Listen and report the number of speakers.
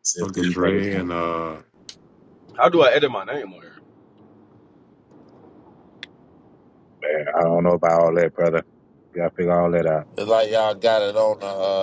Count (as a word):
four